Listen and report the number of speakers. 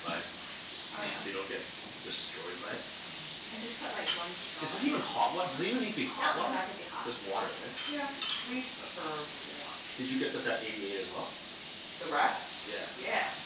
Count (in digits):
3